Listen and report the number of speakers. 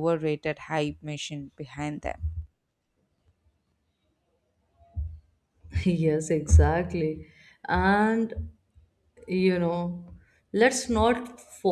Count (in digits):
2